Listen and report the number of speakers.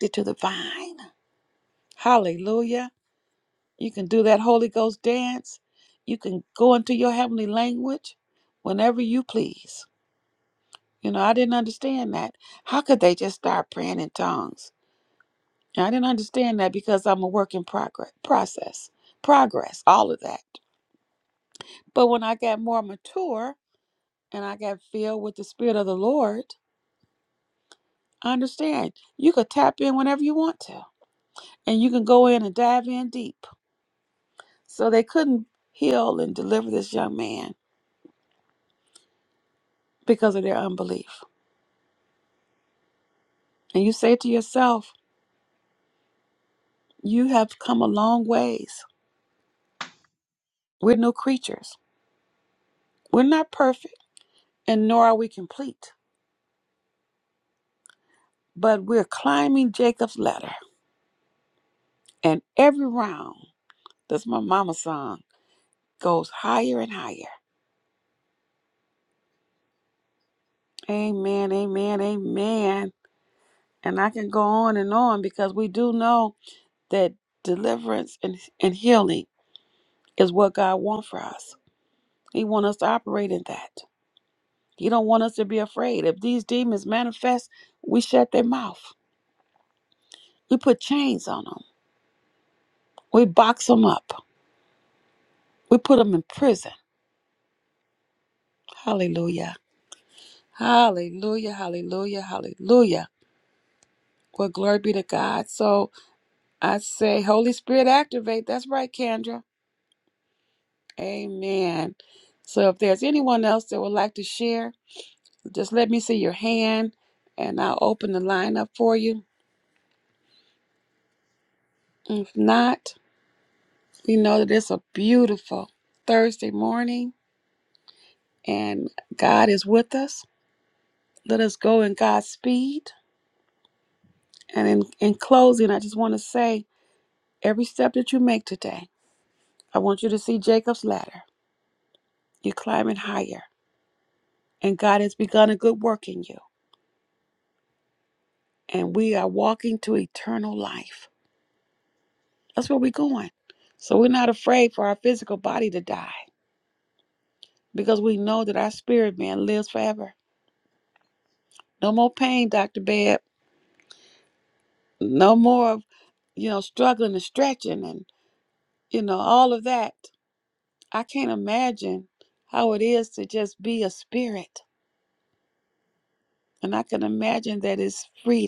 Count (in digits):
1